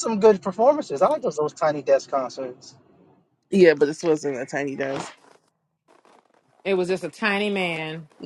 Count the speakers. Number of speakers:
3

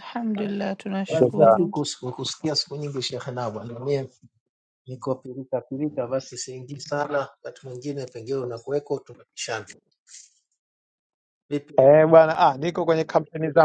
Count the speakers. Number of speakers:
3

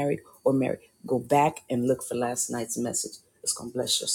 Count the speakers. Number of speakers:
1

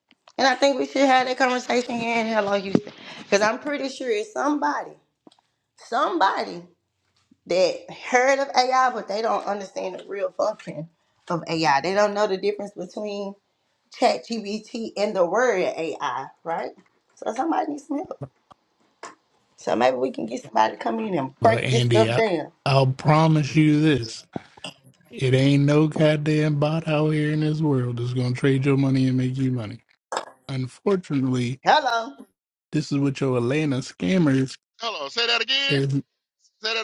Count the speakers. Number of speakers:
3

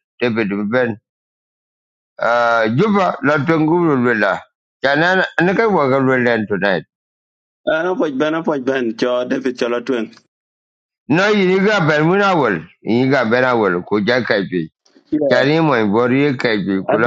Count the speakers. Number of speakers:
2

